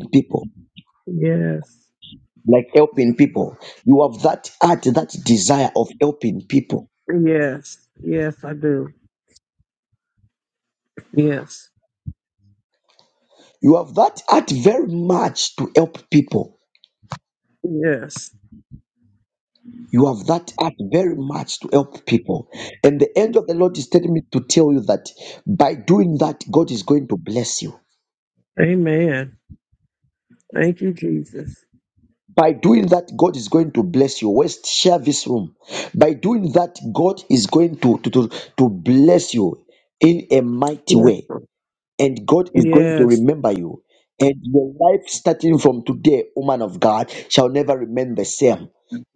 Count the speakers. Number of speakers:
two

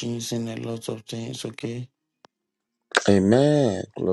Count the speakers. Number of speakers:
two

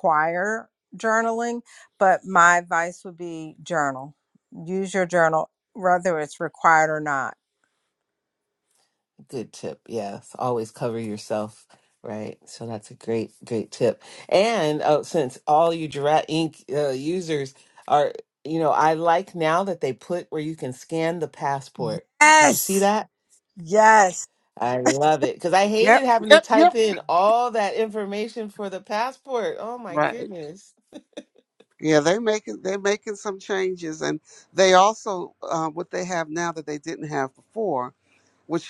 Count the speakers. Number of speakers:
three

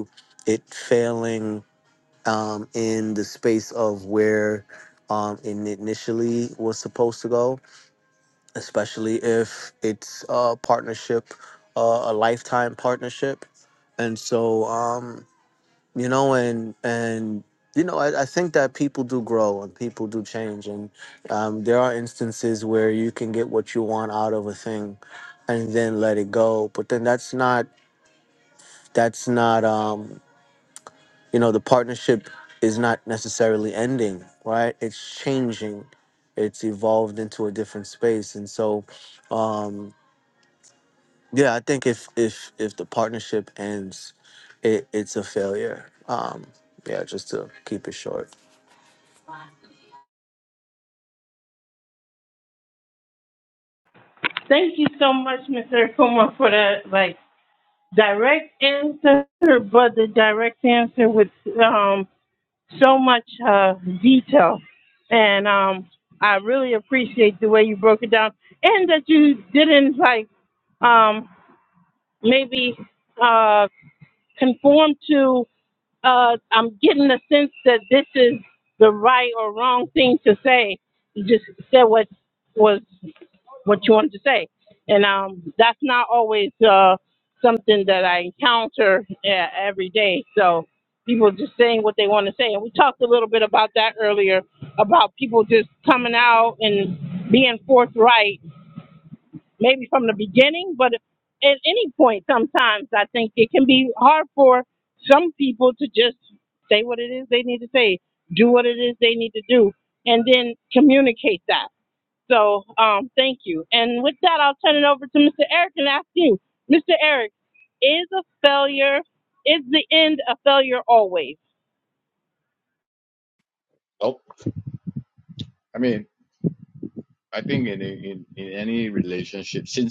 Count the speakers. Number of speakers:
three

